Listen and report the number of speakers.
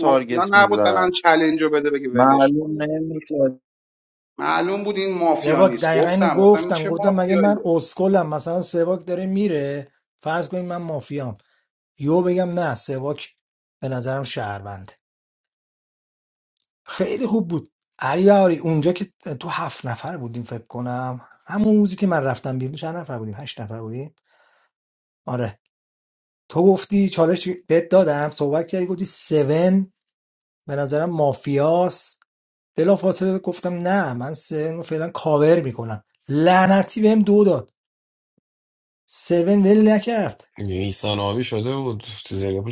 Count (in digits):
4